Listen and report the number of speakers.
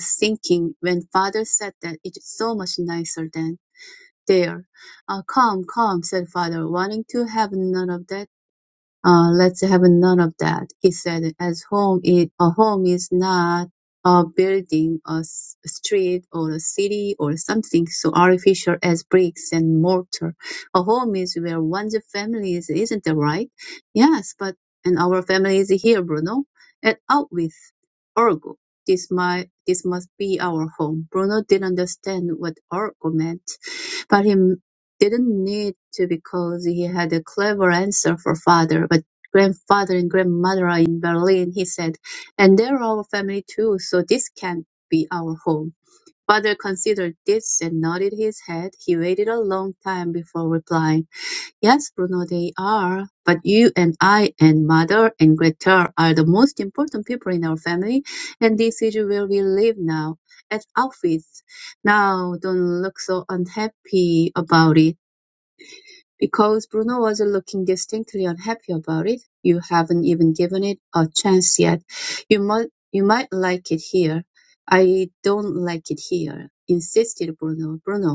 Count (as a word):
one